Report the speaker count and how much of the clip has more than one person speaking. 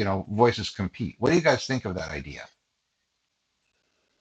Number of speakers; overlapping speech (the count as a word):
one, no overlap